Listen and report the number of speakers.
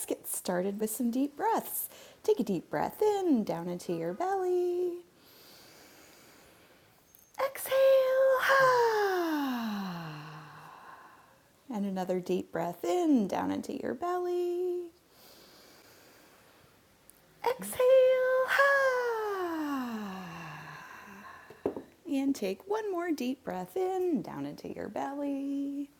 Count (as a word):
one